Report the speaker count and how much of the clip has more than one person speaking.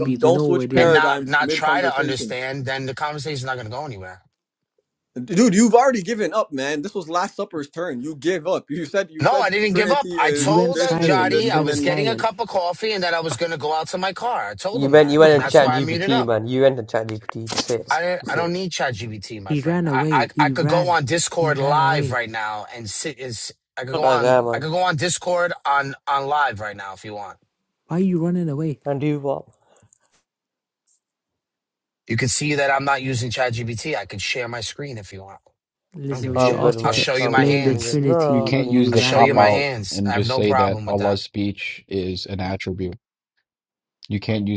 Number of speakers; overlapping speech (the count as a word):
five, about 34%